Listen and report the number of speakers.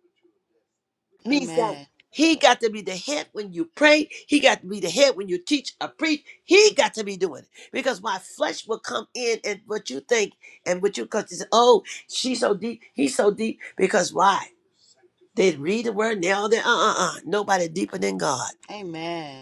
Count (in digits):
2